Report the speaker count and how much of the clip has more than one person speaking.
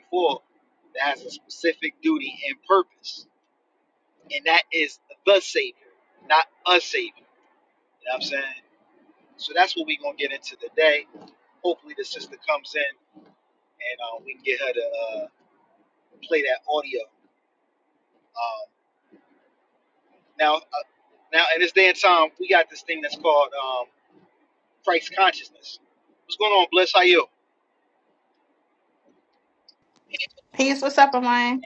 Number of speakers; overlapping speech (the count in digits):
2, no overlap